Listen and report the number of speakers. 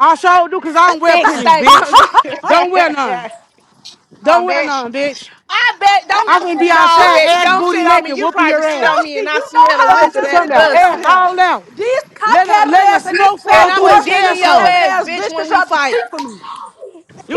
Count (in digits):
3